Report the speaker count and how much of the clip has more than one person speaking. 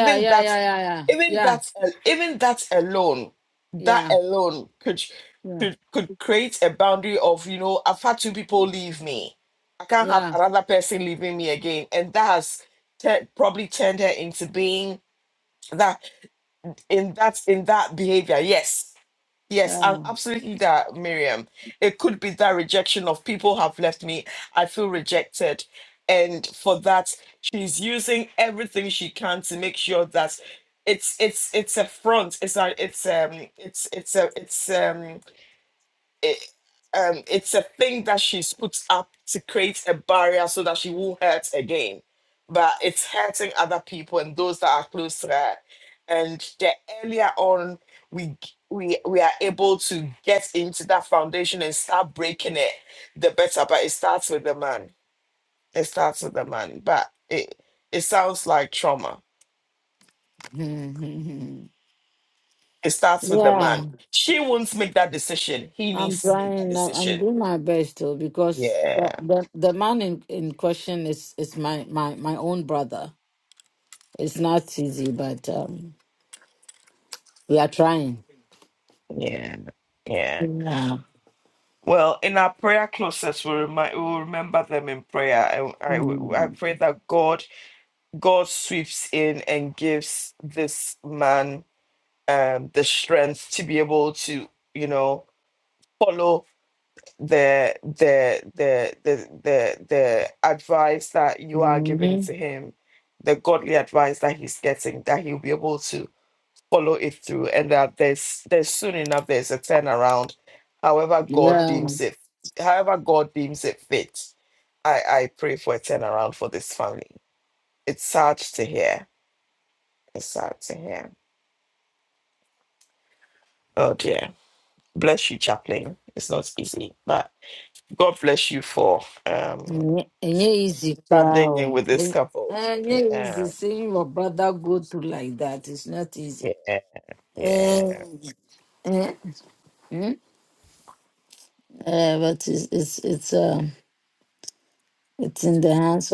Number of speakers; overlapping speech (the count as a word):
two, about 5%